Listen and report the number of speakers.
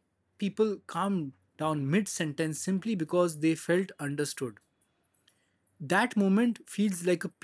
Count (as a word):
one